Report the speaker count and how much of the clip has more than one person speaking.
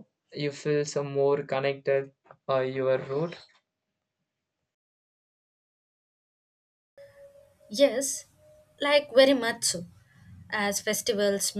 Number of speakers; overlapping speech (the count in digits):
2, no overlap